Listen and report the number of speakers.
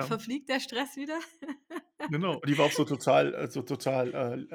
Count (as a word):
two